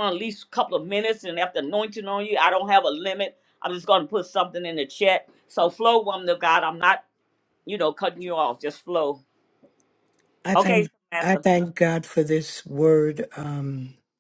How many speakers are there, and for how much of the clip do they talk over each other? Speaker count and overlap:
two, about 4%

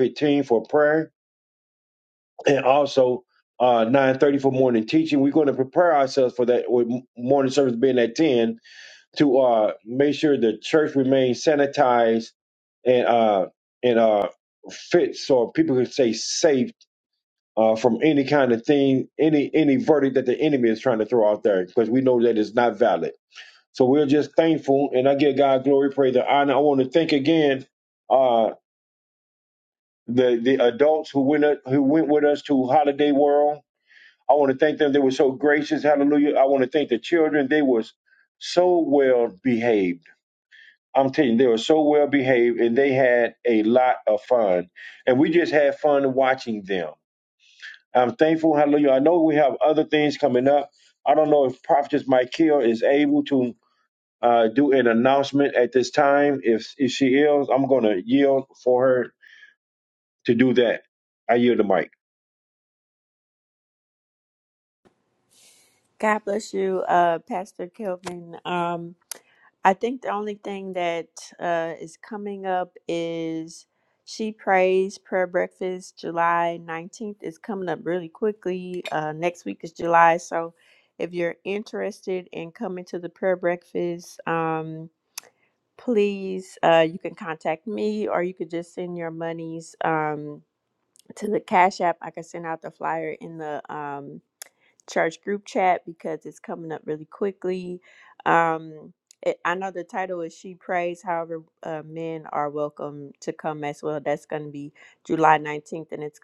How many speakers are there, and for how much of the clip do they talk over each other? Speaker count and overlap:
two, no overlap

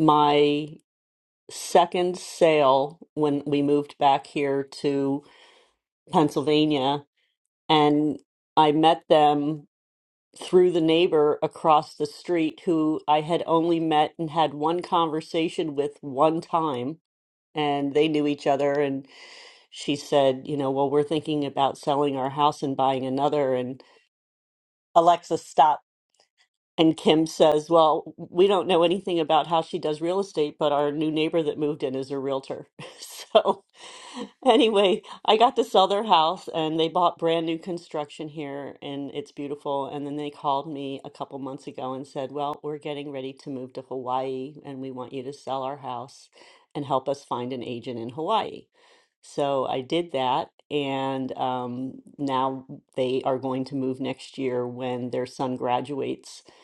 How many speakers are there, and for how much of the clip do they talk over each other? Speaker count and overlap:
one, no overlap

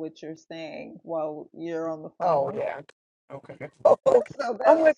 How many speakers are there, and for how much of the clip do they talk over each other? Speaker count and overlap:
two, about 15%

